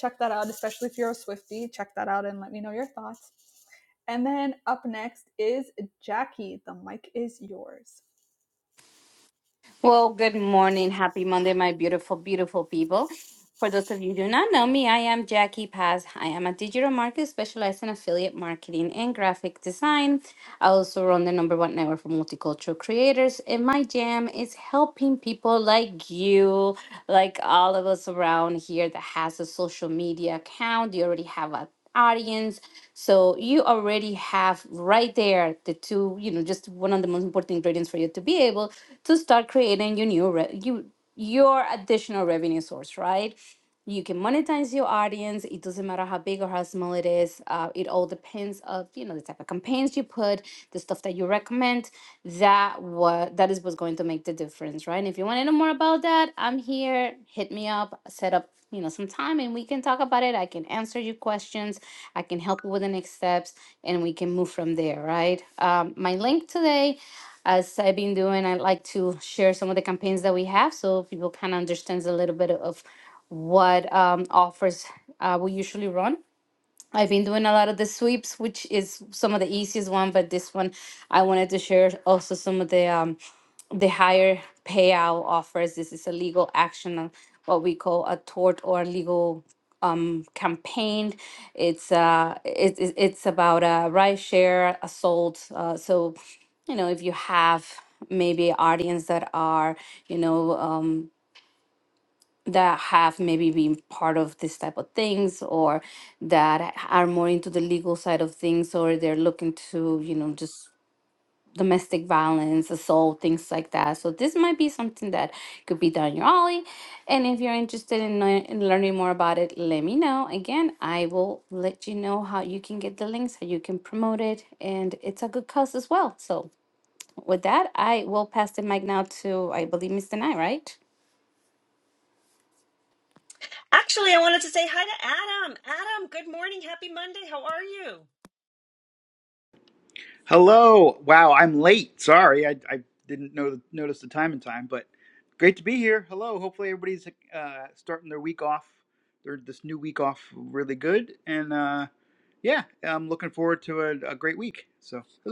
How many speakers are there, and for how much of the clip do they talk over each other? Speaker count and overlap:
four, no overlap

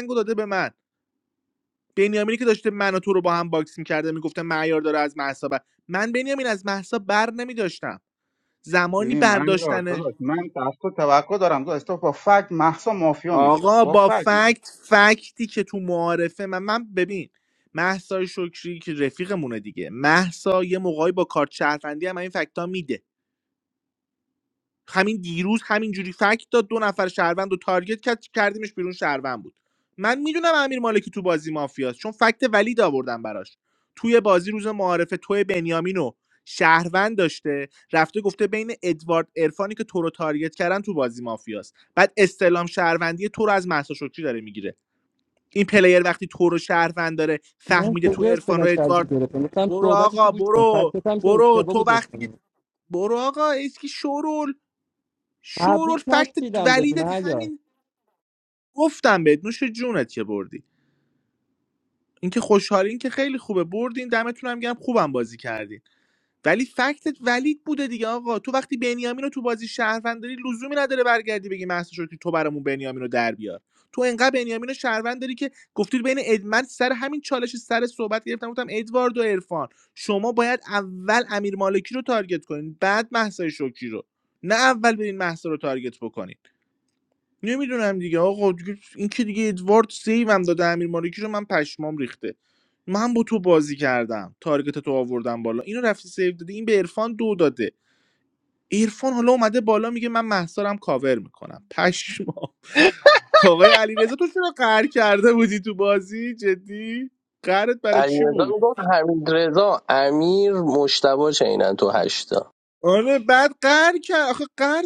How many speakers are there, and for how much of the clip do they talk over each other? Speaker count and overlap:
four, about 7%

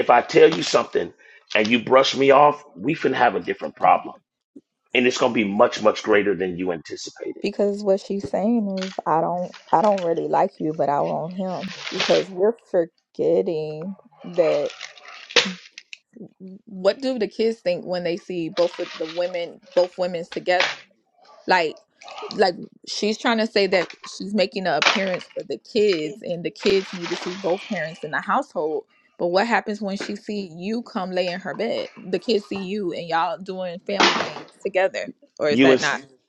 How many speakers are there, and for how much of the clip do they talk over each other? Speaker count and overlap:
two, about 1%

